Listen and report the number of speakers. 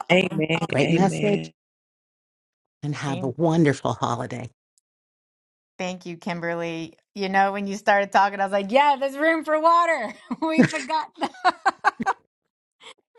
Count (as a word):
three